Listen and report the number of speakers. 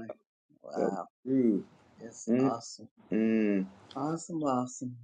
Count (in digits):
2